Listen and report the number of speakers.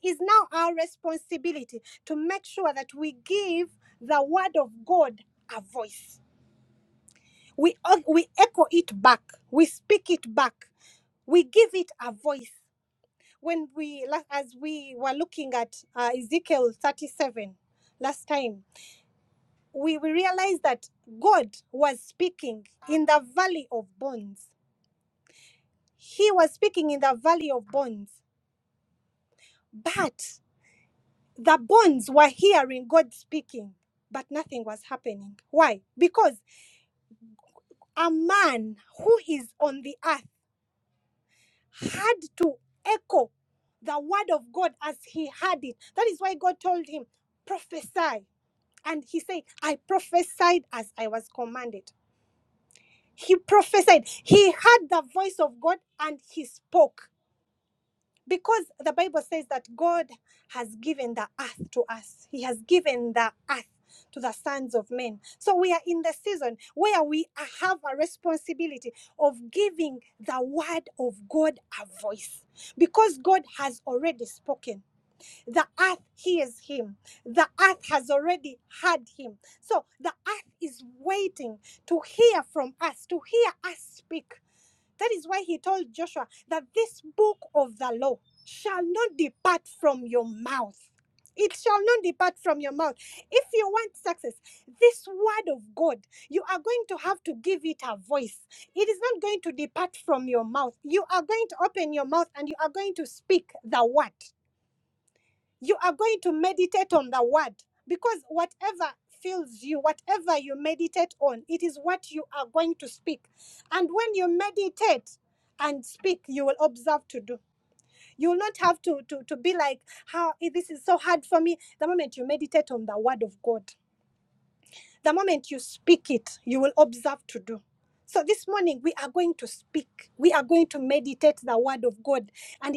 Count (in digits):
1